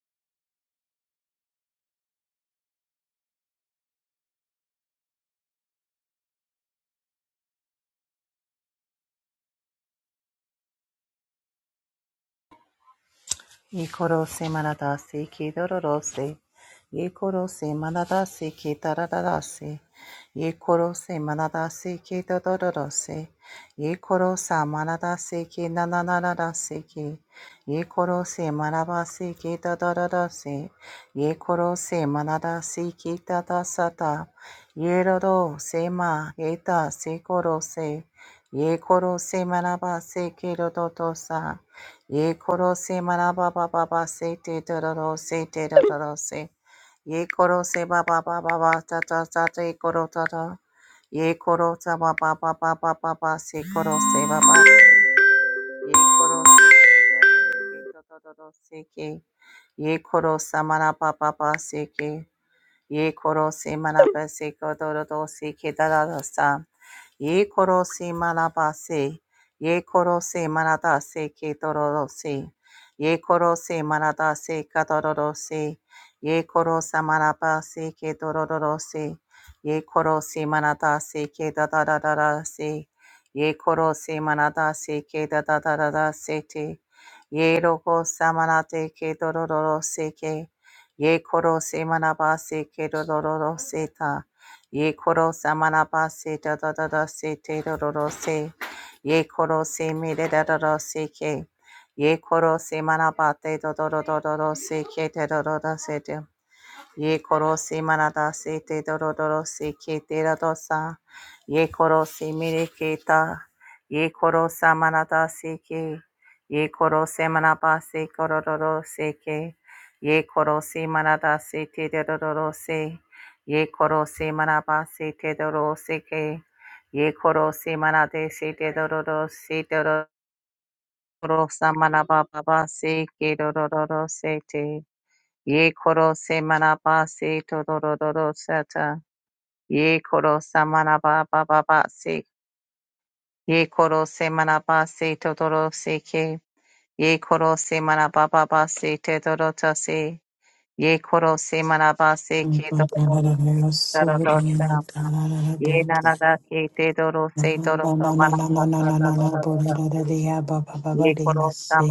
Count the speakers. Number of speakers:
two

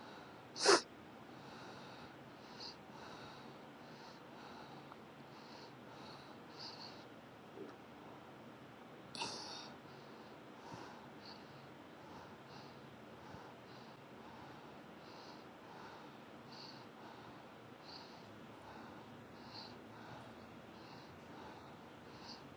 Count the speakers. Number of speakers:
zero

